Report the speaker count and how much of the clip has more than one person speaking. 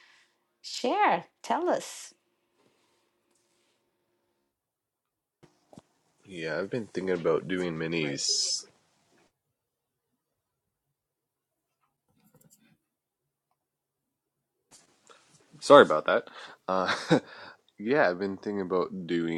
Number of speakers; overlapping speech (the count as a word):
two, no overlap